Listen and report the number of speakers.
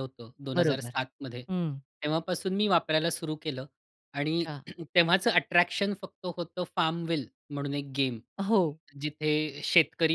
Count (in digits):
2